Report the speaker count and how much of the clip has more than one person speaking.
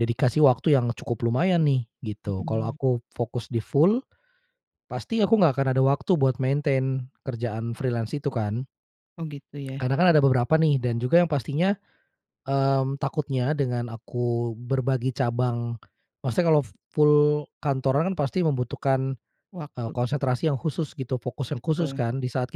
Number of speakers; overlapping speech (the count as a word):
two, about 5%